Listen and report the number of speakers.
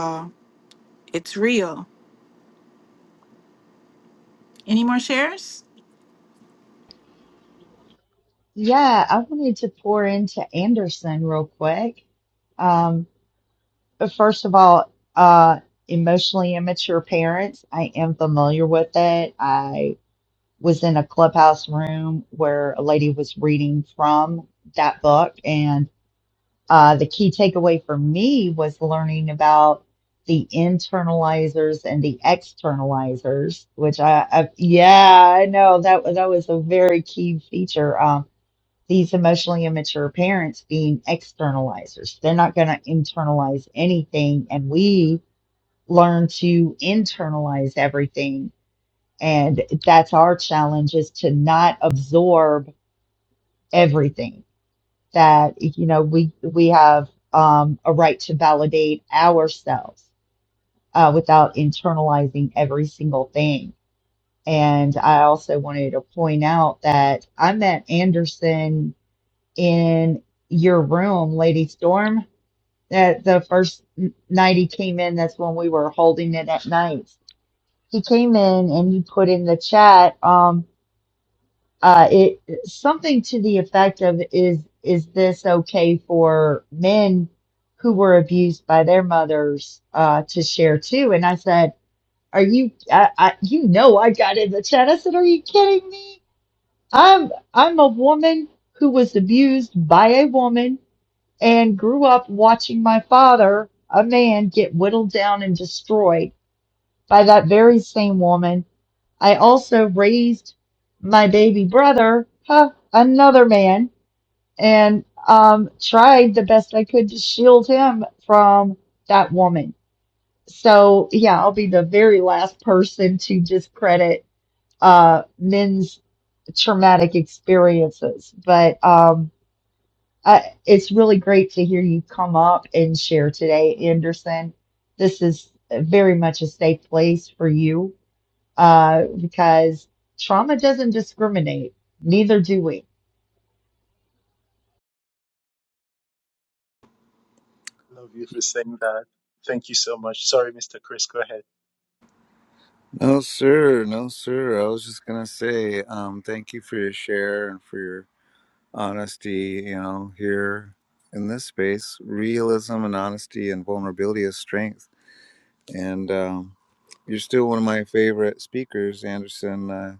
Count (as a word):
four